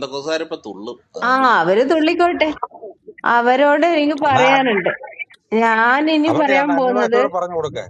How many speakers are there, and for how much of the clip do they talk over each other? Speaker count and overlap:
3, about 22%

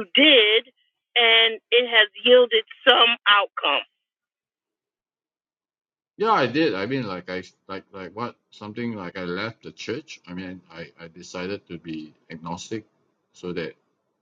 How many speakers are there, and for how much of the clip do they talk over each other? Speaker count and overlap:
2, no overlap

